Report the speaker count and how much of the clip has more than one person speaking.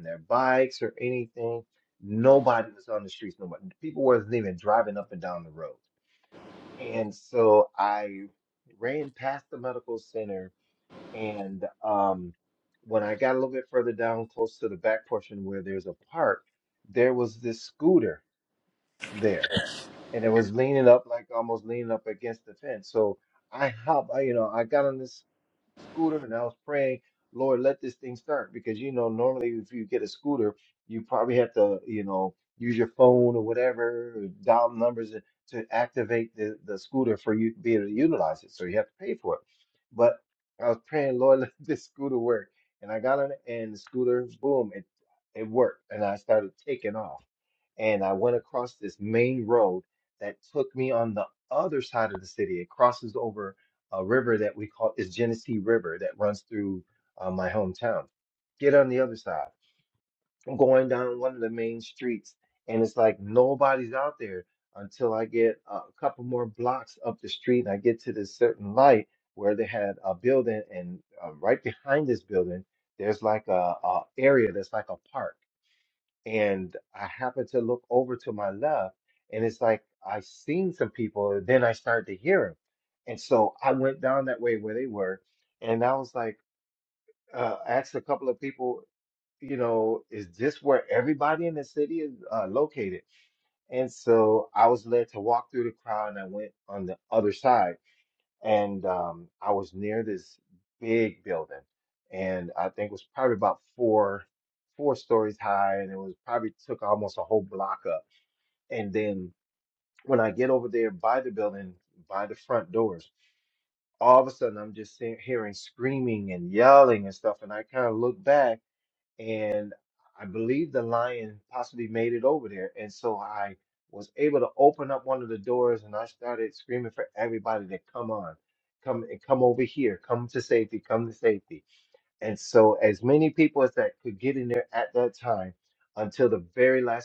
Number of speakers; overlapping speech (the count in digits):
1, no overlap